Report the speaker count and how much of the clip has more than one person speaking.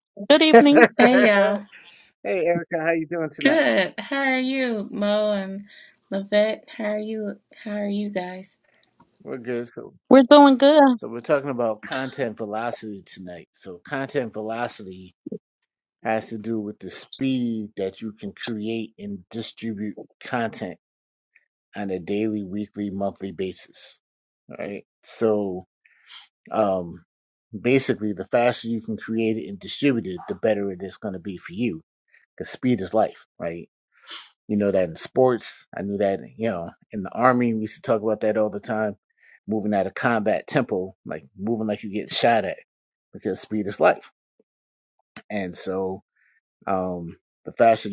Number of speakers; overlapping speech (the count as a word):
three, under 1%